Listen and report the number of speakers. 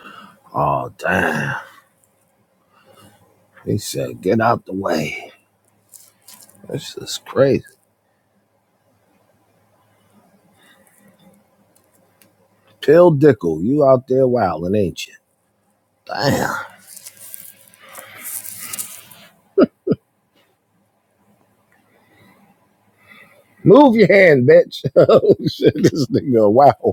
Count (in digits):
1